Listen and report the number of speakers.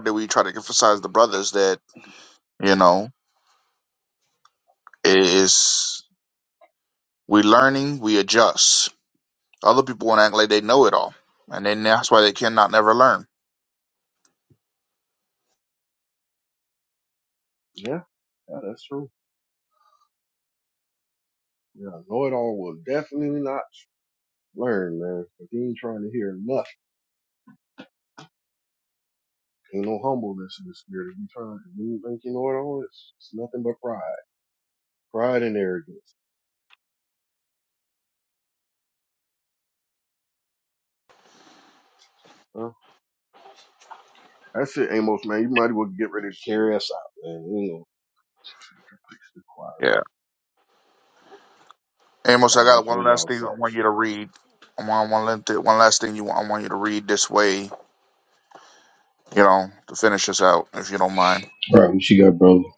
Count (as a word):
three